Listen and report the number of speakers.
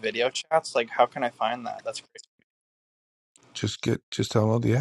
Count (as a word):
two